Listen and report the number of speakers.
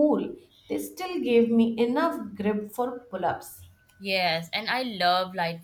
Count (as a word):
two